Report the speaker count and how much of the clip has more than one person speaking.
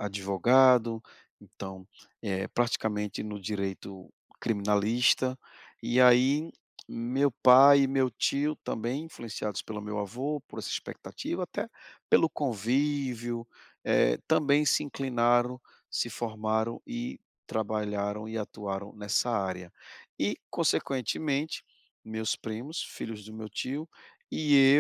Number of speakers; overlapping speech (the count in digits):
1, no overlap